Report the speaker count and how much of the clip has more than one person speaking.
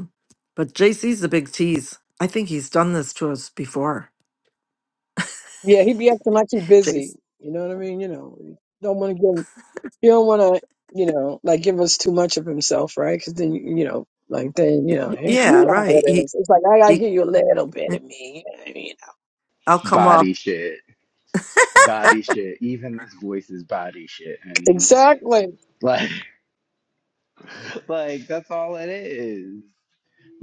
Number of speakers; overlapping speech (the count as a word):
three, about 7%